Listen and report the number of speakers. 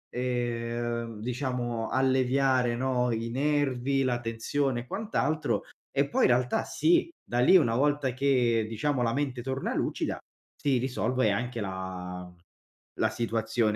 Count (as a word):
one